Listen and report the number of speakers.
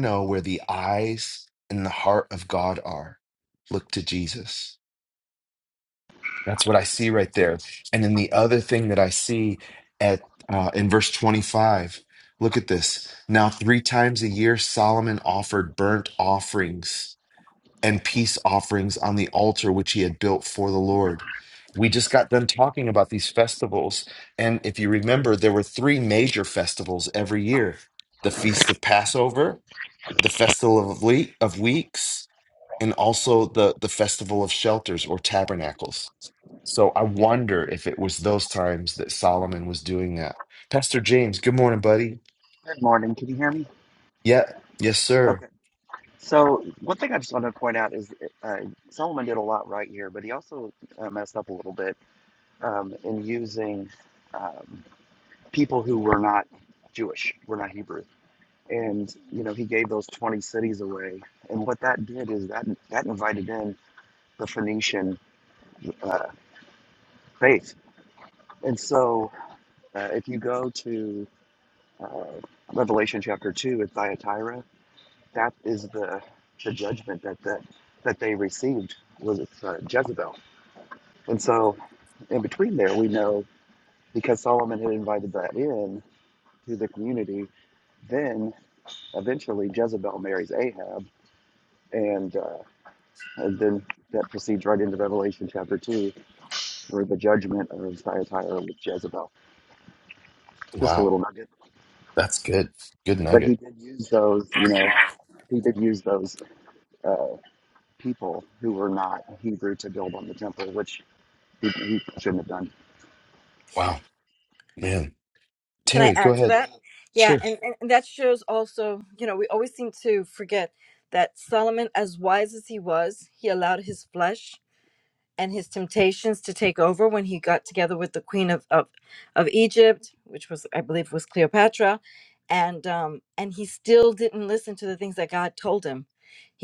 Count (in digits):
3